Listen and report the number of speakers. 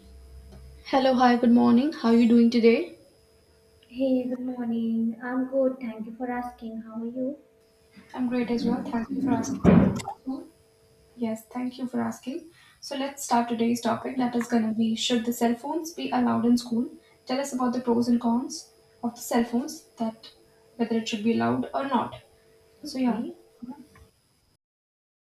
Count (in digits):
2